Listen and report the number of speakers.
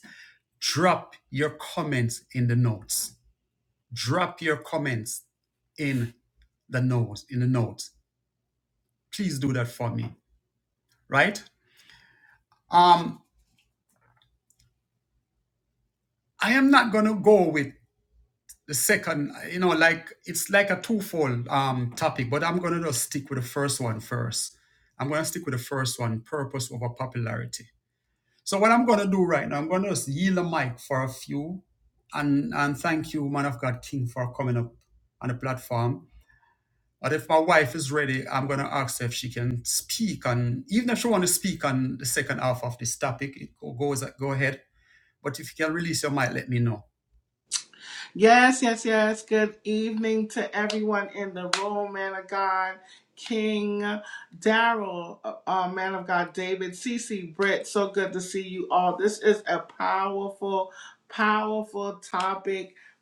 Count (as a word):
two